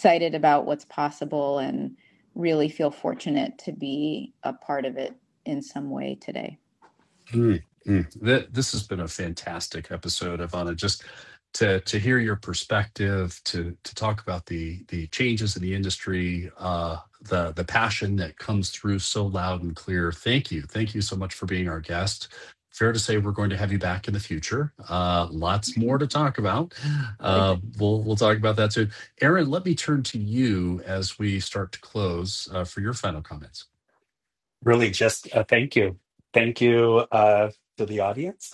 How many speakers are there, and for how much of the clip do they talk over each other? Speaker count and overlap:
three, no overlap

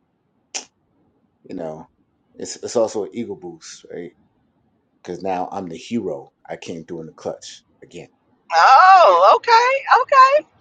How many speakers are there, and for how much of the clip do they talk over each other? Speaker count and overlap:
two, no overlap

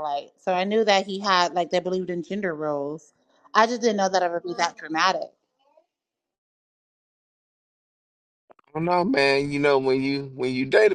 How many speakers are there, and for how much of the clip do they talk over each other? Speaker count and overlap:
two, no overlap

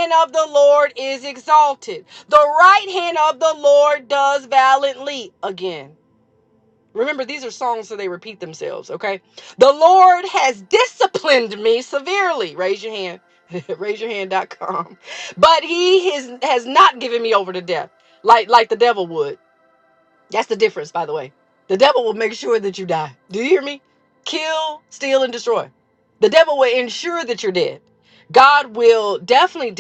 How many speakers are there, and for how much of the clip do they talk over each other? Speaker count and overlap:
one, no overlap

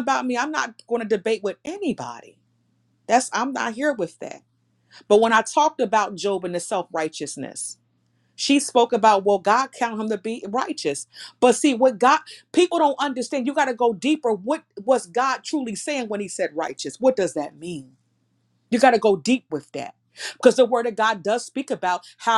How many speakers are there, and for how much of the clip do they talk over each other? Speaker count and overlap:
one, no overlap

